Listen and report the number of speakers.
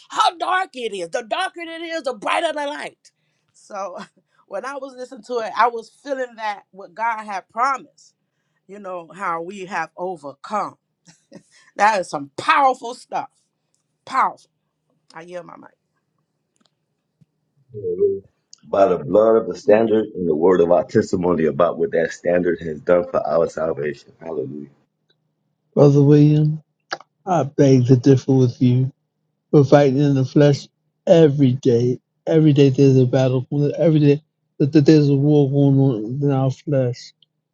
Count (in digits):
3